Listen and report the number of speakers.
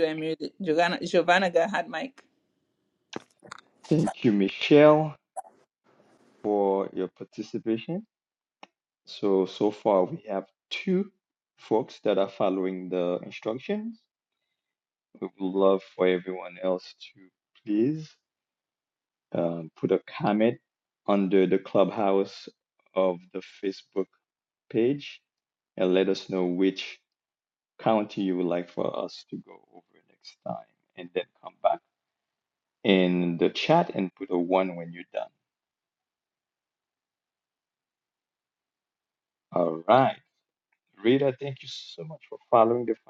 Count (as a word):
two